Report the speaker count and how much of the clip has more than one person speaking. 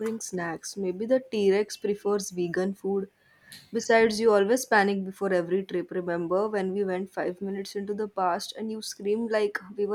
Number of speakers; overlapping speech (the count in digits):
1, no overlap